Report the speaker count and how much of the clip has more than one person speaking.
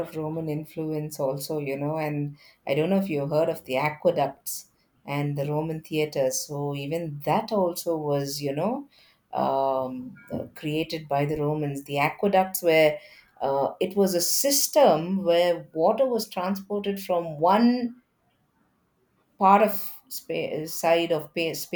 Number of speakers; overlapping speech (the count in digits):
1, no overlap